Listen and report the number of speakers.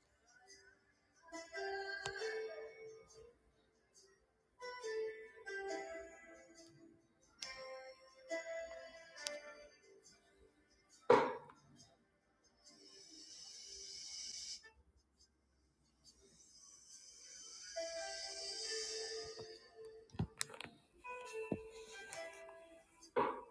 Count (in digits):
0